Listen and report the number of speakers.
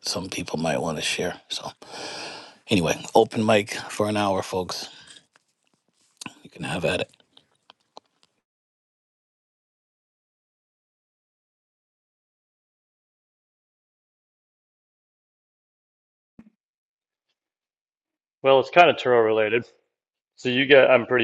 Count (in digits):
2